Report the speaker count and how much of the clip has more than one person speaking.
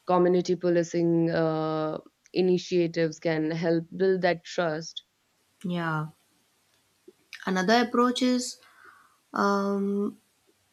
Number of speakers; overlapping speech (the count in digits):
2, no overlap